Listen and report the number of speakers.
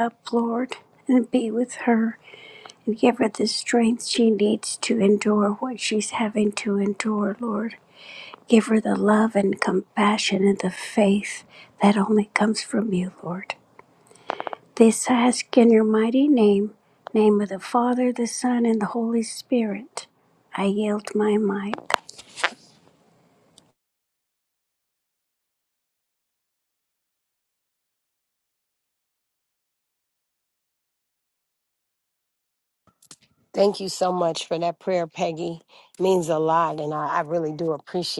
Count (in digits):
2